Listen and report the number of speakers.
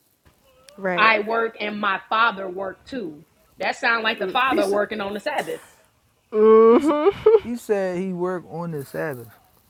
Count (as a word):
three